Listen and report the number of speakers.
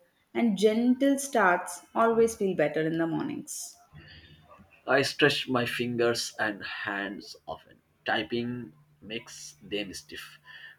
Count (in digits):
2